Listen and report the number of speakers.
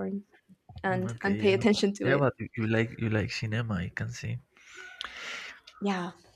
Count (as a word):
two